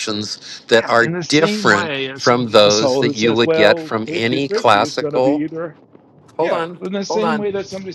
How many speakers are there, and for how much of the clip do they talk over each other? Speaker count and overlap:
two, about 63%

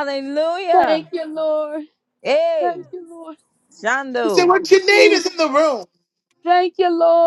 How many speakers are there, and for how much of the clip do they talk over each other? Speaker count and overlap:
three, about 14%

